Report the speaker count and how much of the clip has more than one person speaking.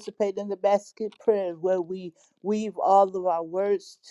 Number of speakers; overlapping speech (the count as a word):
one, no overlap